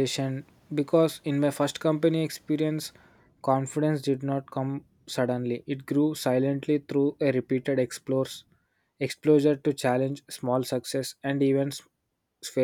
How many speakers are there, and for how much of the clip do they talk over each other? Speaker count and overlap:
1, no overlap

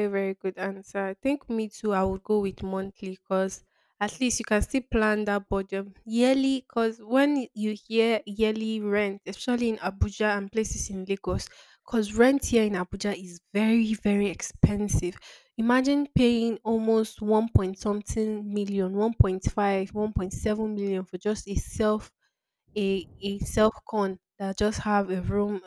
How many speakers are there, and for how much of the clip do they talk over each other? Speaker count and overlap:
1, no overlap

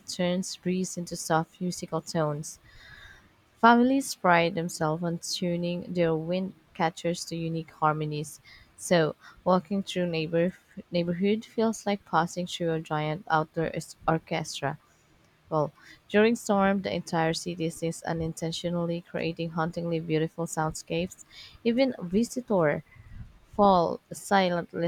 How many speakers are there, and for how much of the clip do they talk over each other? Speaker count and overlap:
1, no overlap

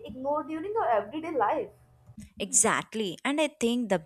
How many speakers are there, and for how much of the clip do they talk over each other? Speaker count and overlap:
2, no overlap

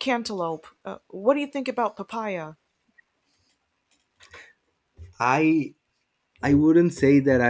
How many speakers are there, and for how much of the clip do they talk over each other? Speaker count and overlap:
2, no overlap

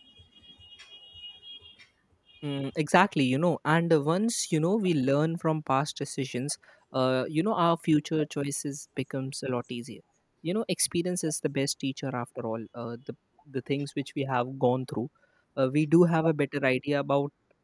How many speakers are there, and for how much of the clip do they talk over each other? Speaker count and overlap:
1, no overlap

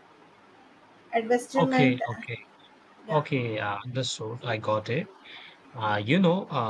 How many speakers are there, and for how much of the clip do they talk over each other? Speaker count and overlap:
2, about 10%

